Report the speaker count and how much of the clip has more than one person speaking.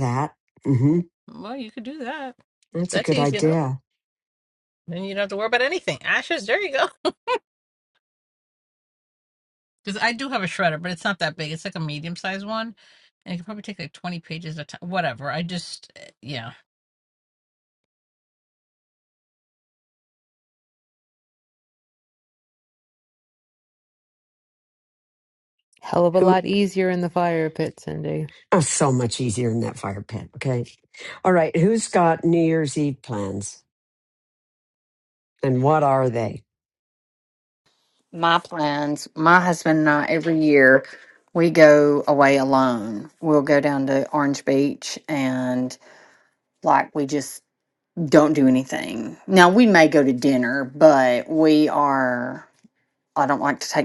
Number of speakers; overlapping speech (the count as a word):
four, about 2%